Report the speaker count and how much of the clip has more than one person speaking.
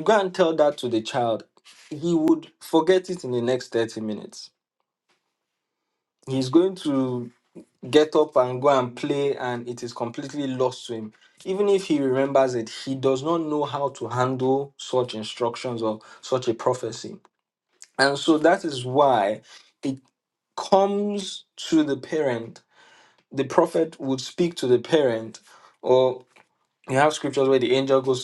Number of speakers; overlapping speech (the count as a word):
one, no overlap